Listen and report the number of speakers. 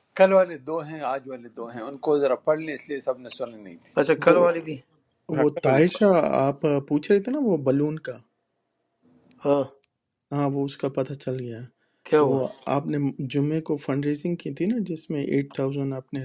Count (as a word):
three